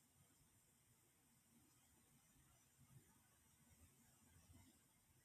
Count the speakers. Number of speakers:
zero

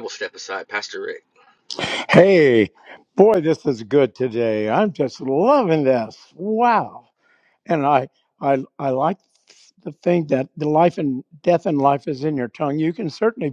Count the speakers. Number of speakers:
two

